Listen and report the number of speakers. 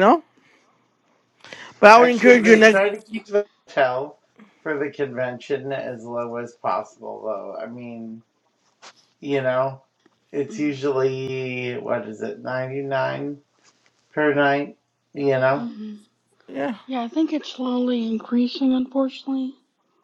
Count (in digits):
3